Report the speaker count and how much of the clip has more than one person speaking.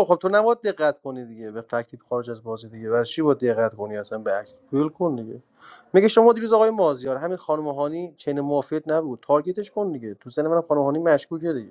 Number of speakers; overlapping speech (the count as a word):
one, no overlap